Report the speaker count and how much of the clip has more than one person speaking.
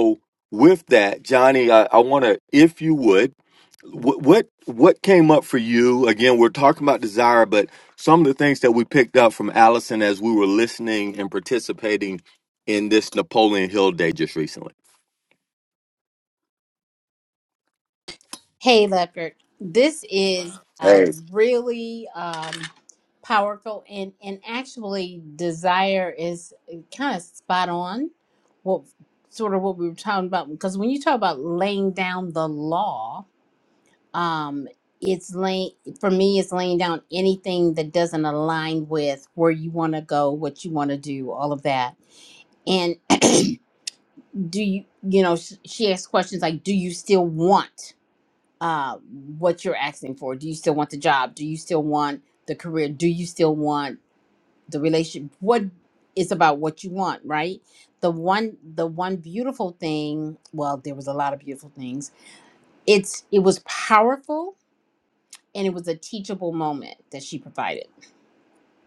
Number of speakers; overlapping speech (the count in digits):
2, under 1%